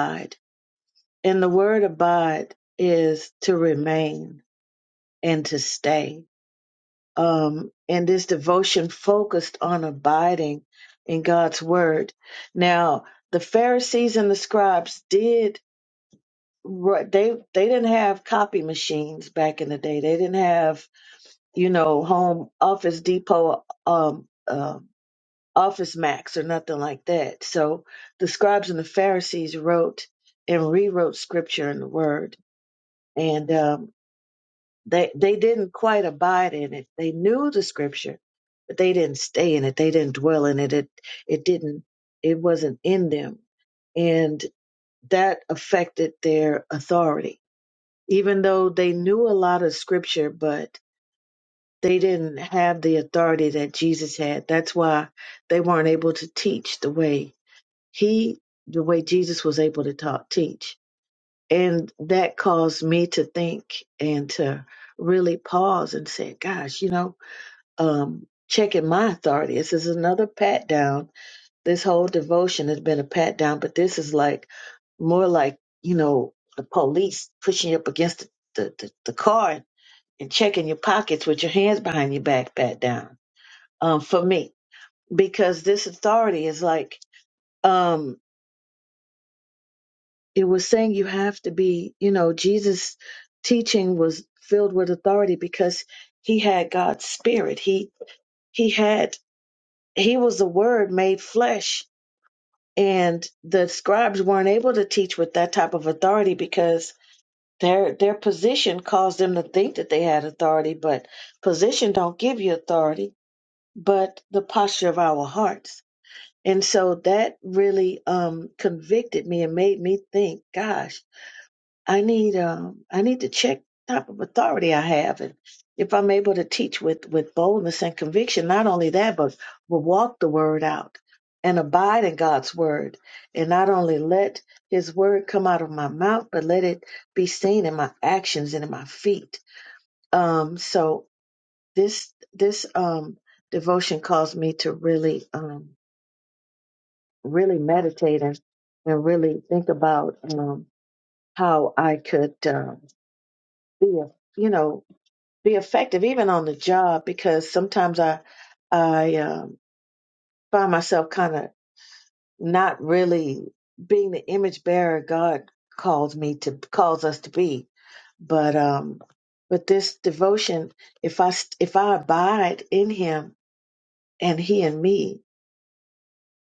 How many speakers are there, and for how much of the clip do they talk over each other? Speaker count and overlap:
one, no overlap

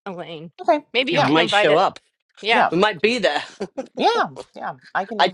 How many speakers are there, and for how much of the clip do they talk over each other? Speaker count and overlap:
three, about 22%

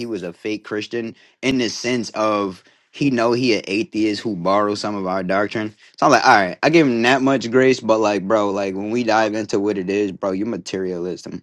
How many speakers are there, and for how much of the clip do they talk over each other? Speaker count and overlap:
one, no overlap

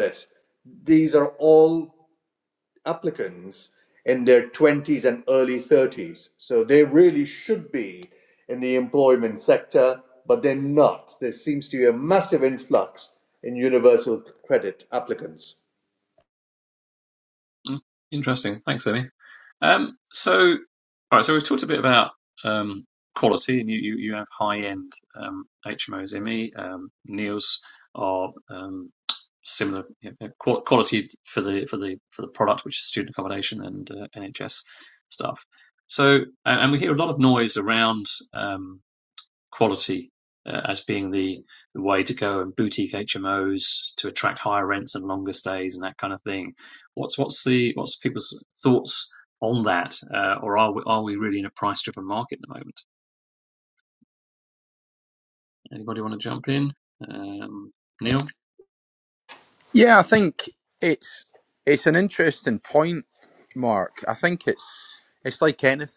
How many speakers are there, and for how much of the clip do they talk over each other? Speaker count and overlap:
three, no overlap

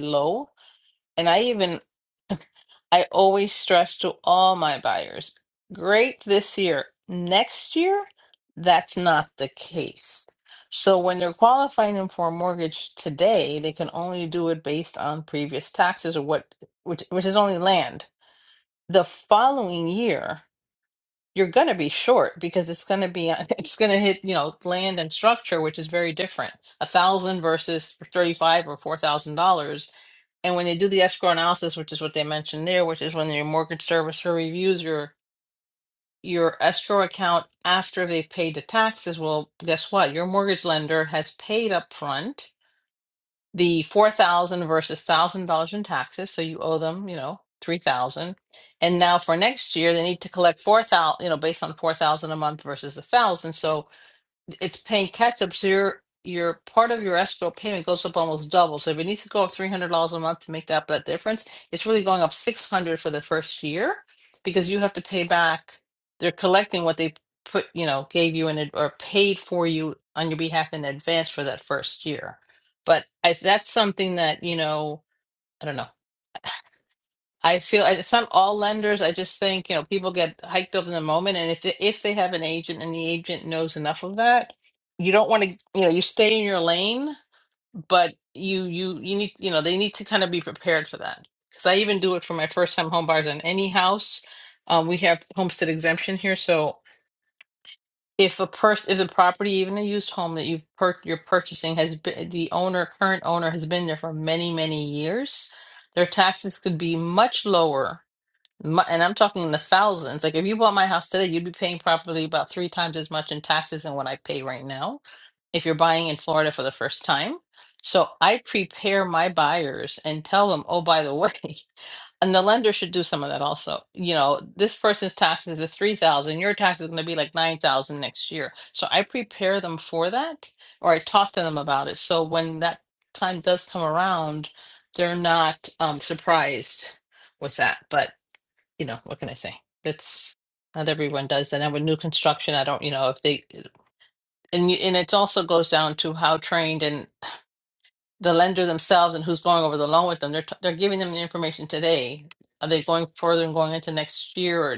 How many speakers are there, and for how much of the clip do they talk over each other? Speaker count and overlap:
one, no overlap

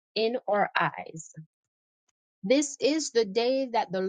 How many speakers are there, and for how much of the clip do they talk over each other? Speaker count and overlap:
one, no overlap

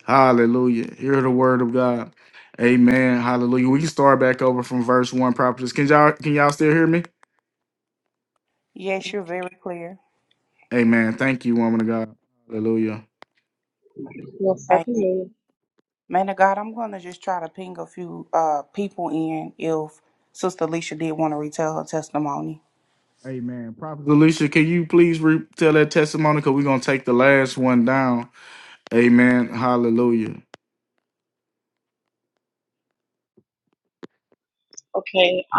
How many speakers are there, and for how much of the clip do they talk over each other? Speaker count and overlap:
three, about 1%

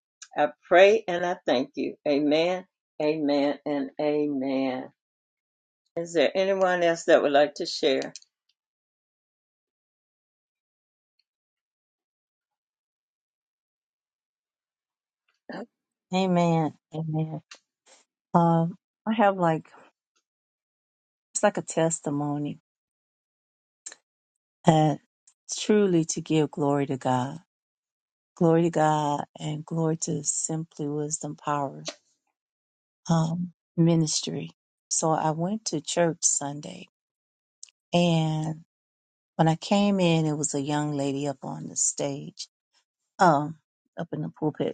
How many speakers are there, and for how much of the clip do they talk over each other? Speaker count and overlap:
two, no overlap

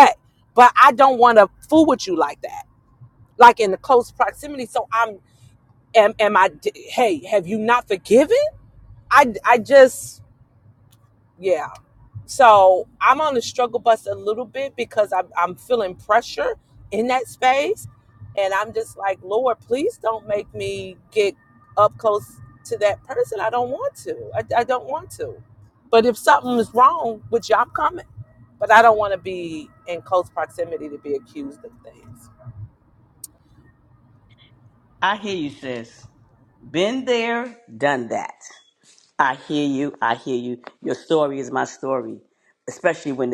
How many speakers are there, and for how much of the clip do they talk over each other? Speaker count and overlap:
two, no overlap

